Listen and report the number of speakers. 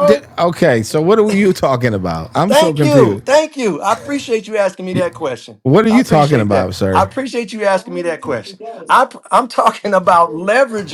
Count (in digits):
2